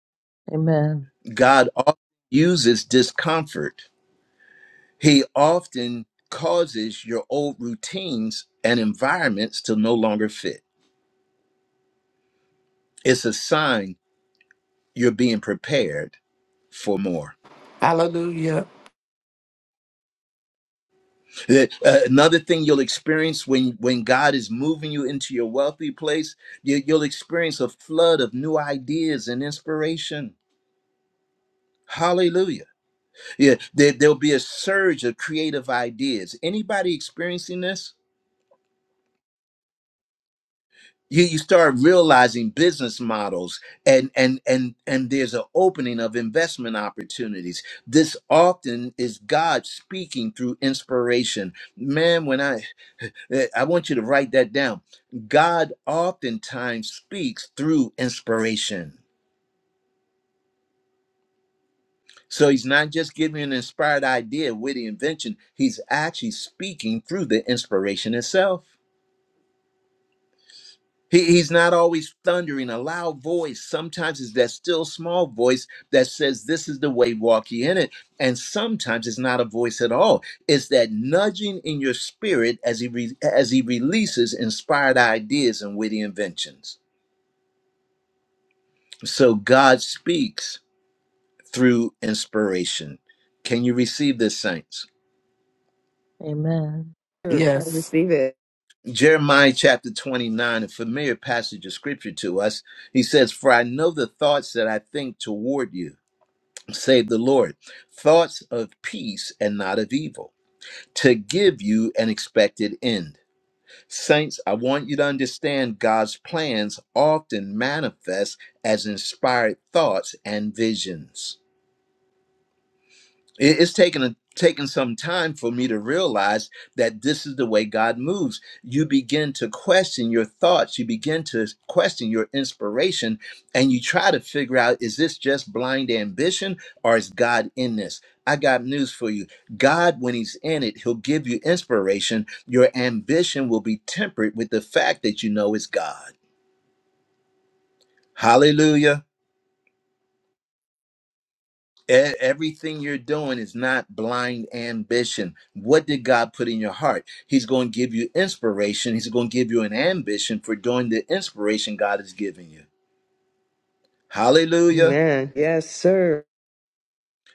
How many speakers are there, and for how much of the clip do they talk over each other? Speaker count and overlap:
four, under 1%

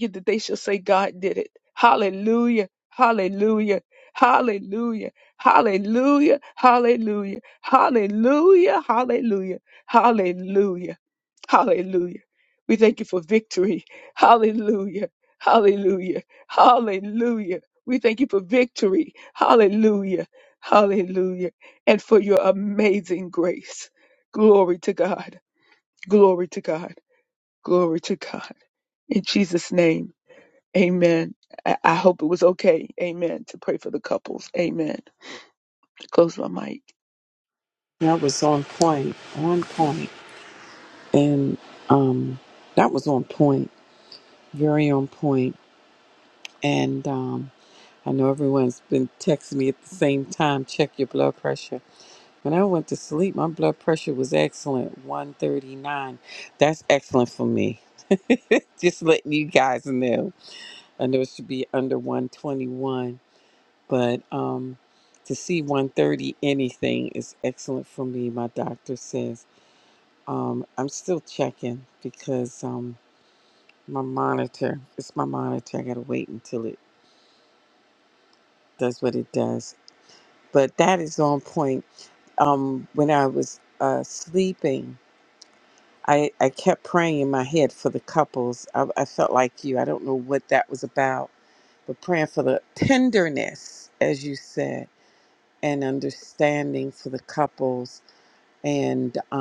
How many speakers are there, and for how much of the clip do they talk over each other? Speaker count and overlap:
two, no overlap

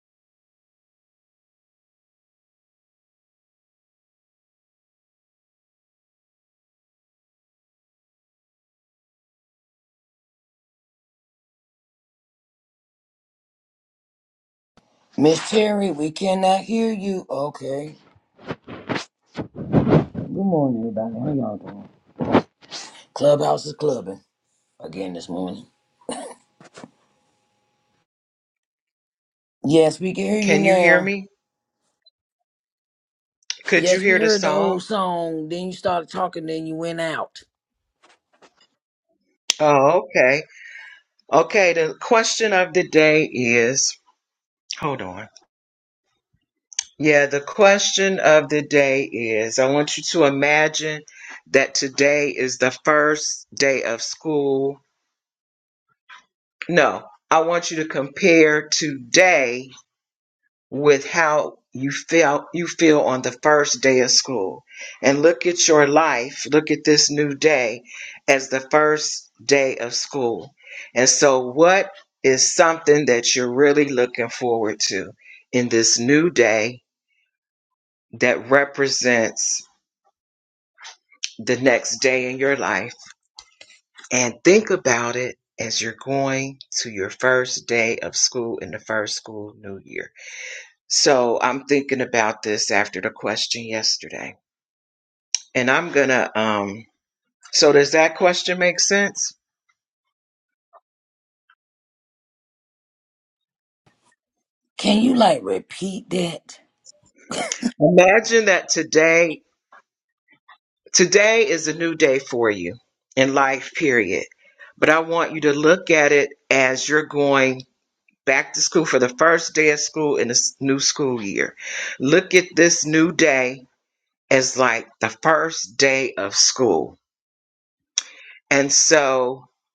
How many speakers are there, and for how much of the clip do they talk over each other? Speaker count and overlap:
two, about 1%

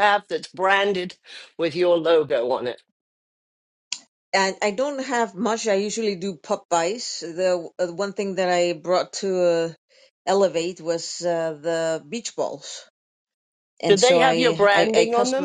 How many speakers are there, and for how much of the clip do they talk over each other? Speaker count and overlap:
two, about 10%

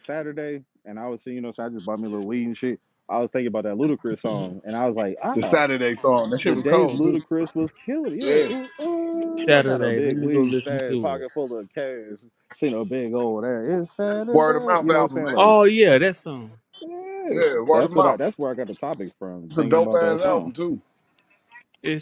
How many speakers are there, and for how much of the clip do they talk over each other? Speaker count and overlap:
three, about 29%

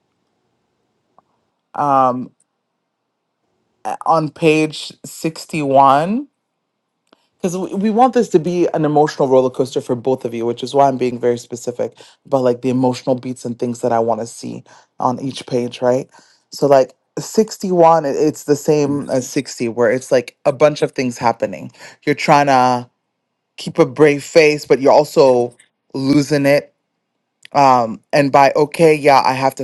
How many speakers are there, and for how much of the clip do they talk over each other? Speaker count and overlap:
one, no overlap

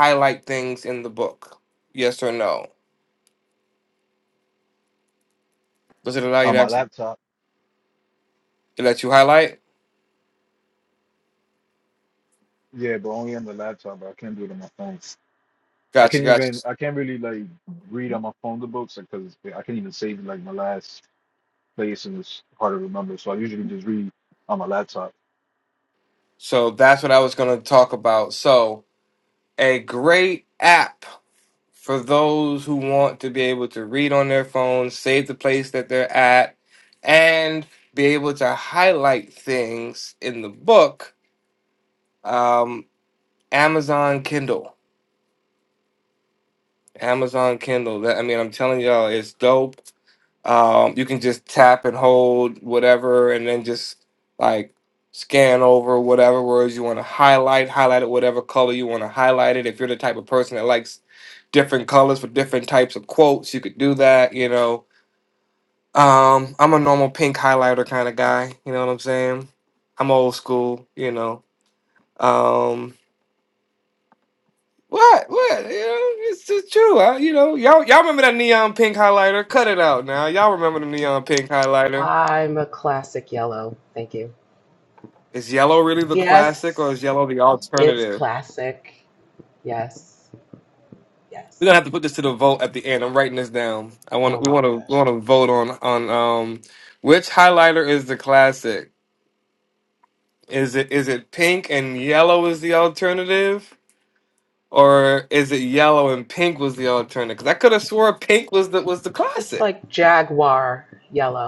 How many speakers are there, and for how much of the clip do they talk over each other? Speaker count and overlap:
three, about 3%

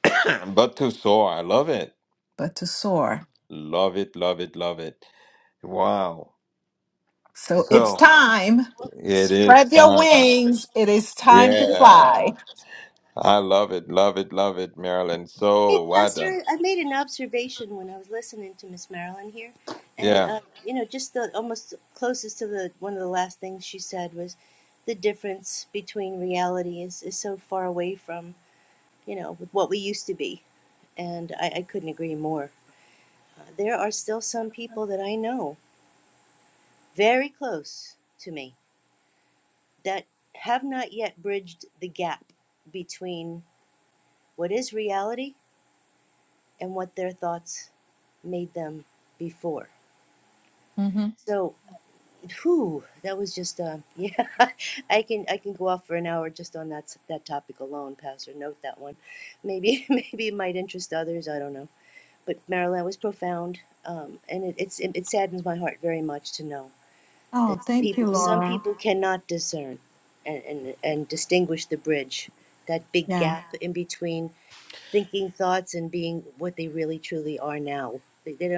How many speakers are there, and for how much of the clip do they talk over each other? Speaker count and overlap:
three, about 6%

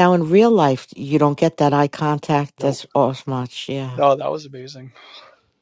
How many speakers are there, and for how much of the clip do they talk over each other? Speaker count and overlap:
two, about 3%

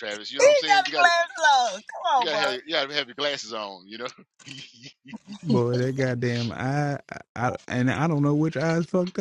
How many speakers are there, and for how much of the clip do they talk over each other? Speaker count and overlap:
three, about 12%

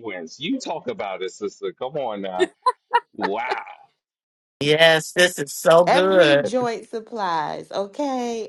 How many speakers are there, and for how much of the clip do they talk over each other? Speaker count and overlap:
three, about 8%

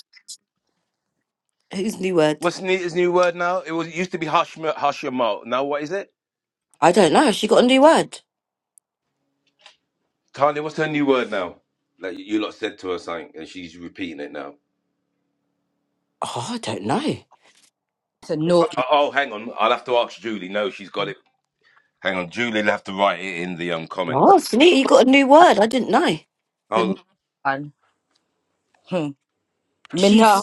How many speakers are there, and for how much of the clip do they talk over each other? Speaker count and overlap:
three, about 4%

